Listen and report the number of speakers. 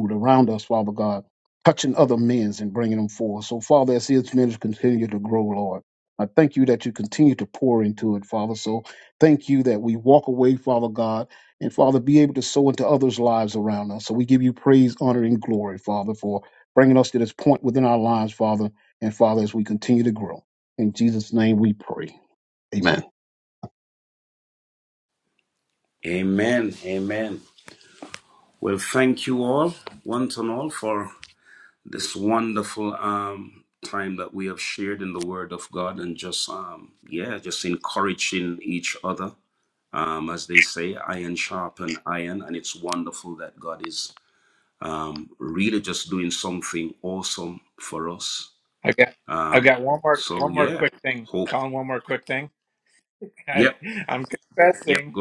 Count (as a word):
three